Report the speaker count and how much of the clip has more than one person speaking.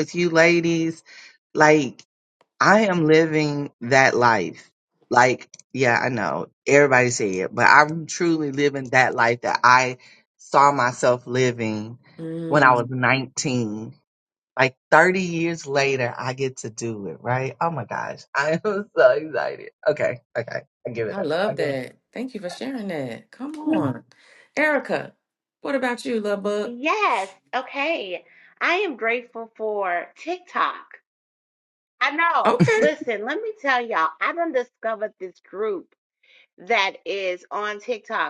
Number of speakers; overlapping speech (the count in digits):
3, about 4%